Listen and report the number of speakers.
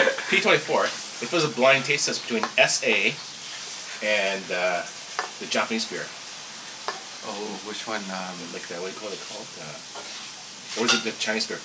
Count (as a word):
two